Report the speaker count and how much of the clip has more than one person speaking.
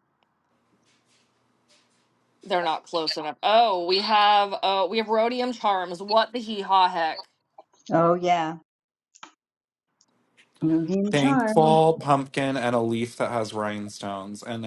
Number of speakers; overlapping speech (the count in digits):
3, about 4%